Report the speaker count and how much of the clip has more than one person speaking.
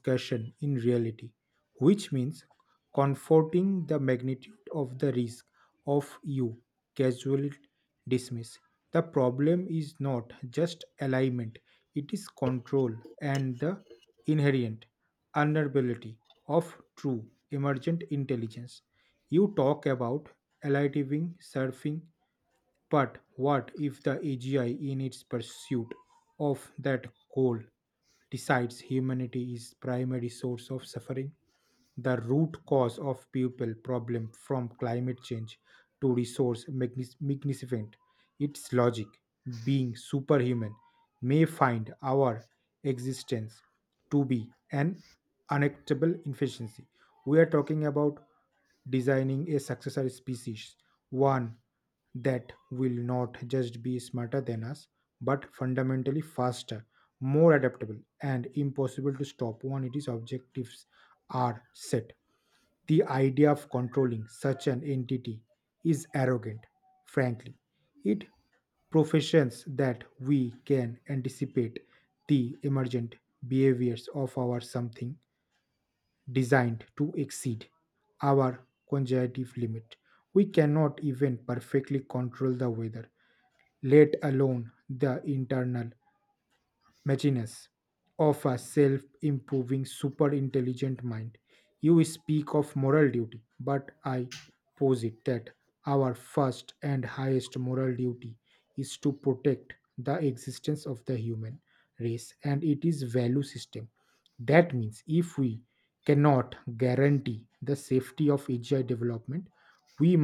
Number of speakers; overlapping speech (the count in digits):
1, no overlap